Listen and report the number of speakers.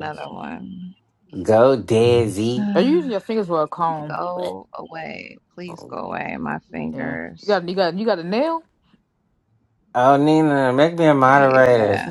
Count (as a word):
three